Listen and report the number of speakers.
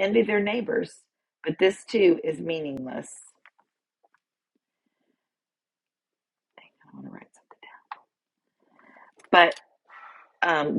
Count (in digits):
1